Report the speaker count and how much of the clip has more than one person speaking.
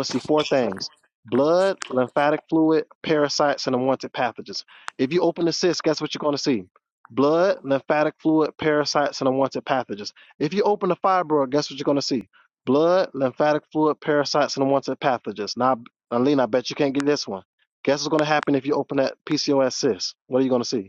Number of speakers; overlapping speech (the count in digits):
1, no overlap